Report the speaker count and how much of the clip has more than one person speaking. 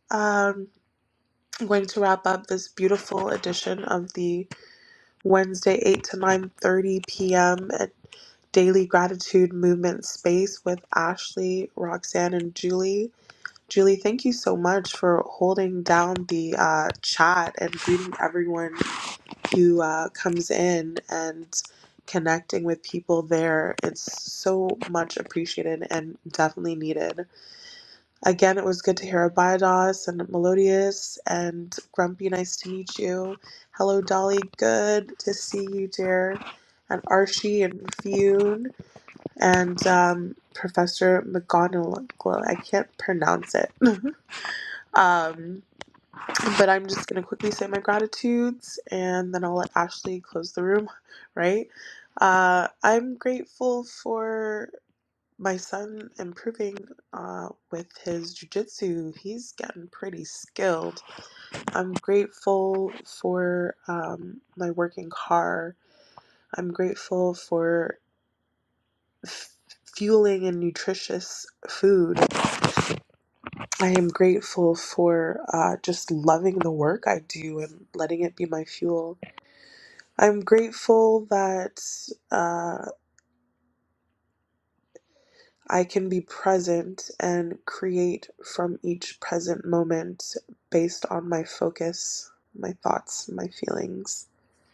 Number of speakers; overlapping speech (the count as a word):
one, no overlap